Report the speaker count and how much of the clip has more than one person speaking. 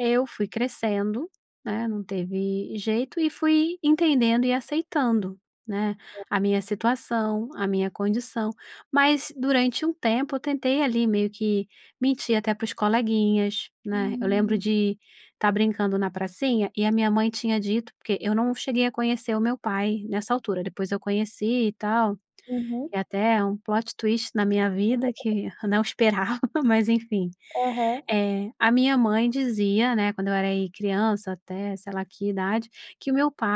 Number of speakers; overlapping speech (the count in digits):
2, about 2%